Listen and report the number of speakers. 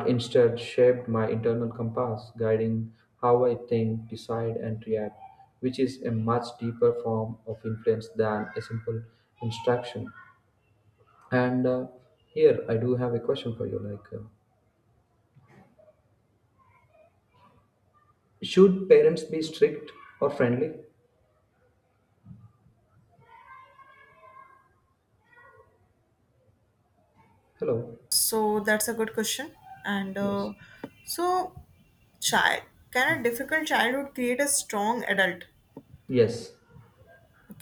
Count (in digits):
2